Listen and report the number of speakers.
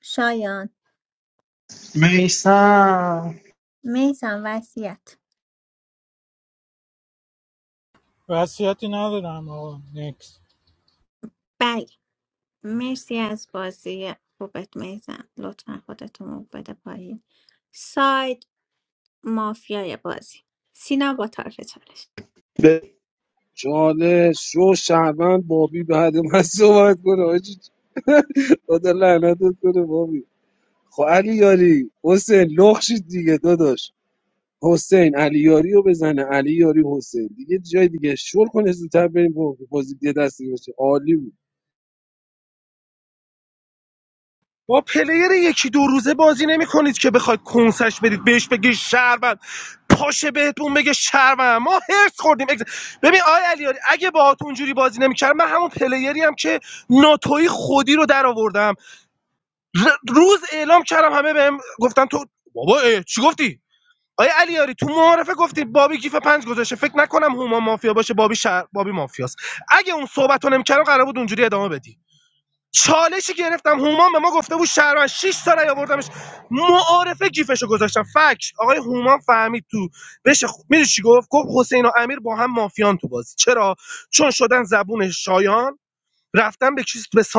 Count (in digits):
5